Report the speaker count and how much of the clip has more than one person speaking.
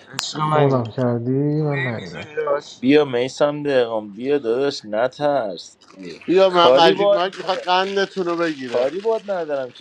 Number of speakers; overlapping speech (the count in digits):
4, about 24%